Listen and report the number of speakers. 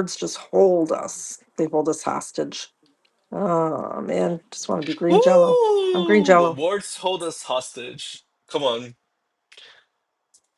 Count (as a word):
two